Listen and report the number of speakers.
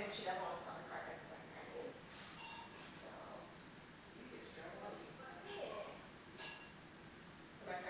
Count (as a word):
two